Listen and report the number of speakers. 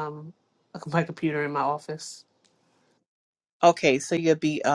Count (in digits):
2